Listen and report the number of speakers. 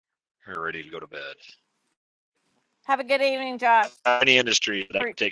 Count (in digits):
2